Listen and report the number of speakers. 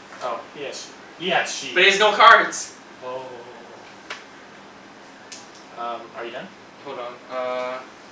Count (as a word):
two